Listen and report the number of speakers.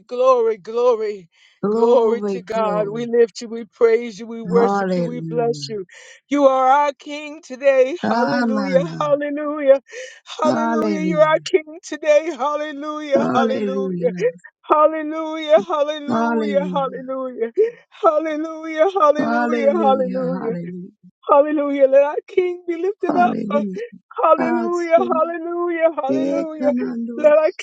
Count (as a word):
two